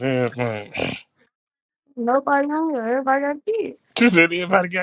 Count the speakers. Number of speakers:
two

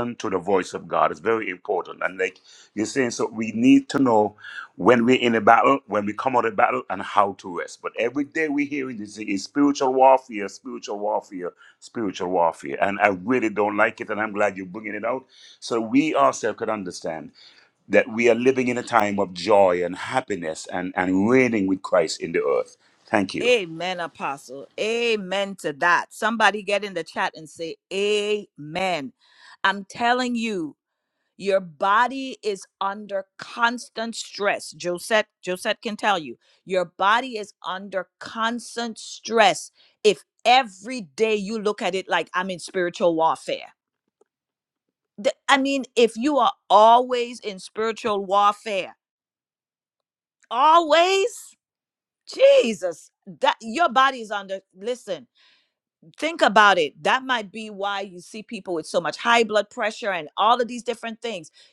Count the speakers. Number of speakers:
two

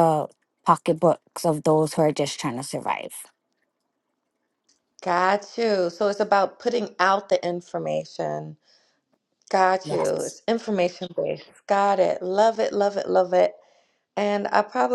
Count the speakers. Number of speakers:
two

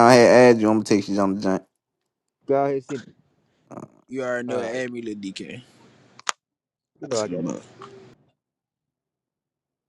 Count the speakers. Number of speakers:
three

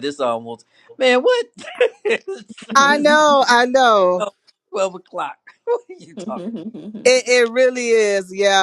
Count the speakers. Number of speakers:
two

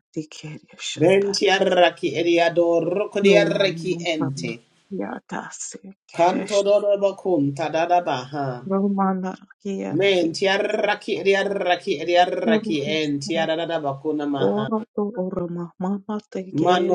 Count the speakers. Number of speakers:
two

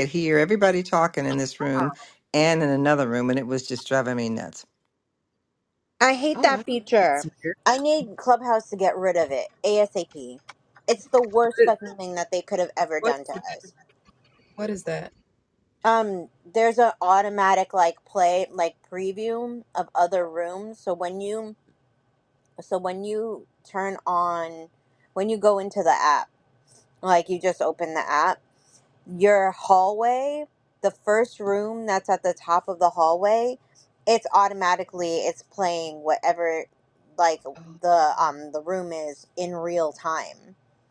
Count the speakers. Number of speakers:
three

